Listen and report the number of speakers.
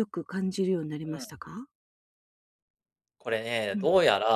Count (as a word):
two